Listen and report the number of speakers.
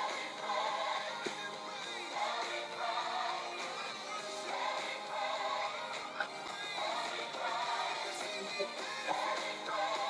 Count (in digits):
0